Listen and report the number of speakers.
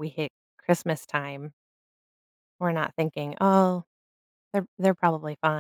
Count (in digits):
1